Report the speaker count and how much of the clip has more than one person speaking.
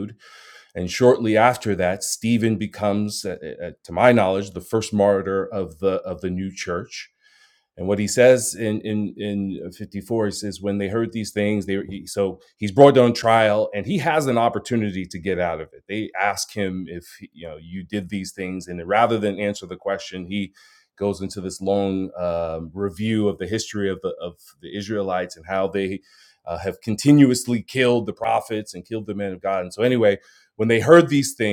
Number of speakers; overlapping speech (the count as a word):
one, no overlap